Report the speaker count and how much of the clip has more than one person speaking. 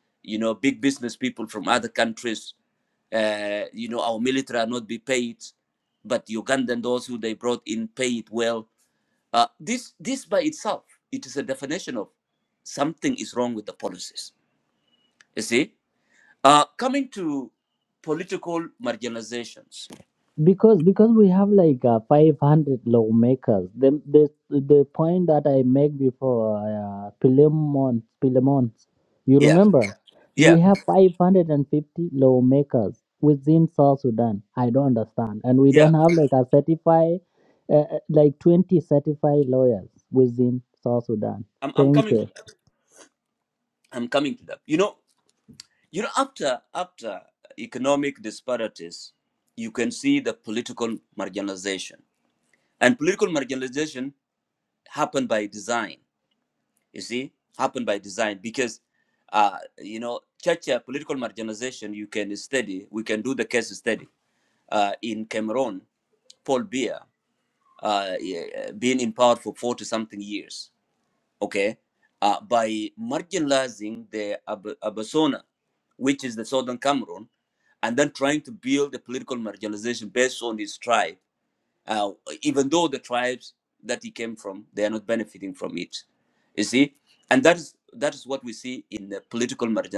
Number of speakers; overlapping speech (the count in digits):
2, about 1%